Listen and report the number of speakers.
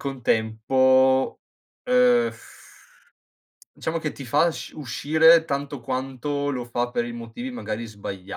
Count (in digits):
1